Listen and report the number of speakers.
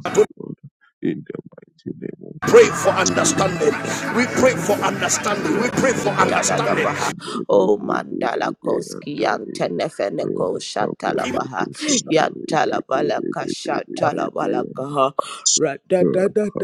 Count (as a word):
three